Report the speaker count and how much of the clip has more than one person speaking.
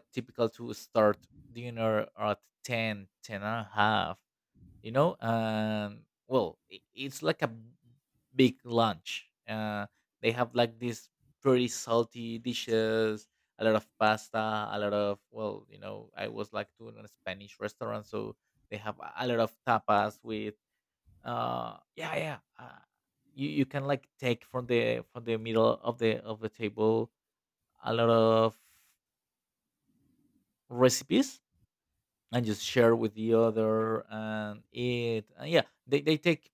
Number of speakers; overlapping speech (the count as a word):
one, no overlap